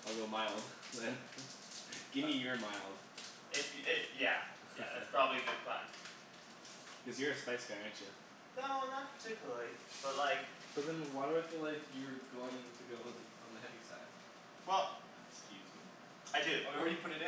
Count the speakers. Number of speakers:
2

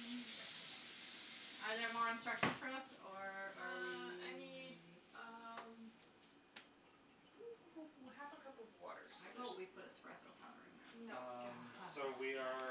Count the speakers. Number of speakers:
3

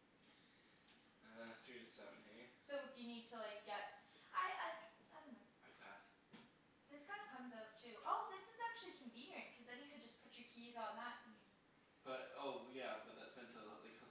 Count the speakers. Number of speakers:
2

